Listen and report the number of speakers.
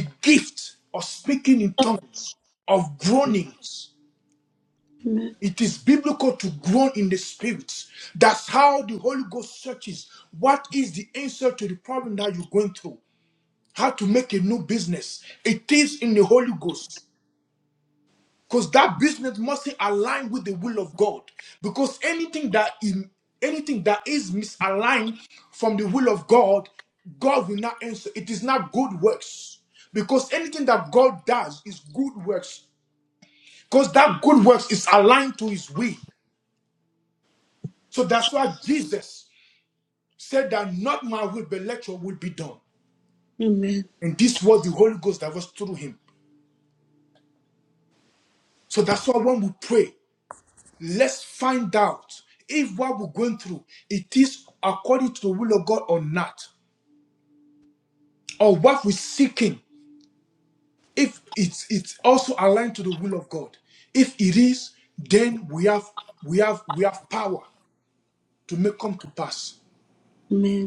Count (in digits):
2